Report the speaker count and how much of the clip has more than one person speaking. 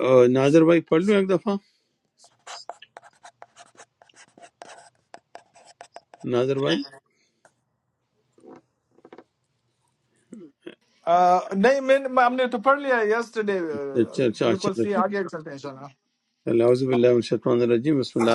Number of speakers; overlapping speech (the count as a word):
two, about 3%